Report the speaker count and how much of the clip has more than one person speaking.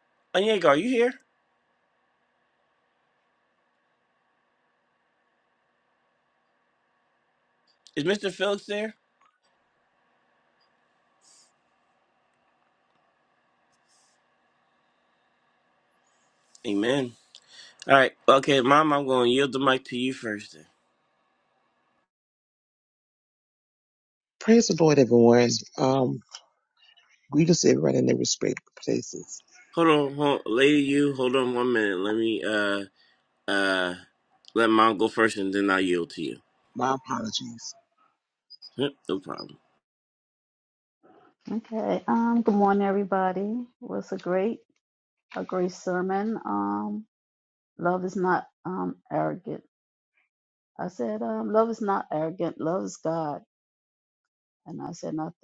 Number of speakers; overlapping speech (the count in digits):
3, no overlap